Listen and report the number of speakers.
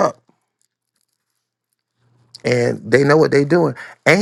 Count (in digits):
1